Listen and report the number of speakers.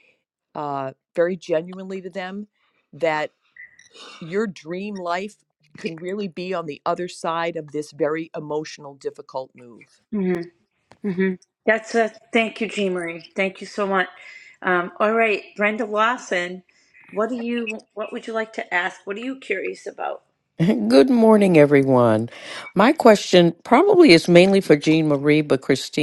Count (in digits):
3